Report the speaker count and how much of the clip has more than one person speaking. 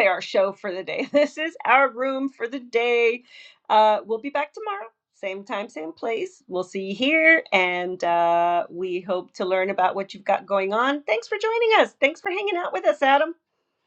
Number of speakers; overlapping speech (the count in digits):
1, no overlap